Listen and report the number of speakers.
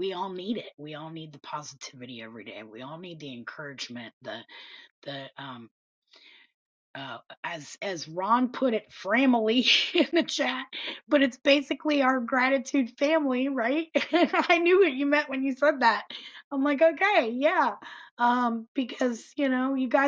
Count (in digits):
1